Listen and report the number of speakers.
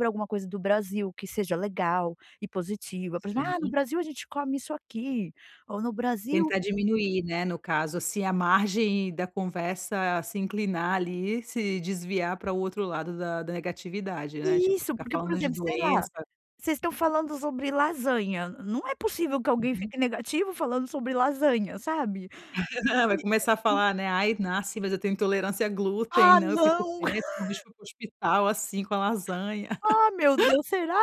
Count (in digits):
2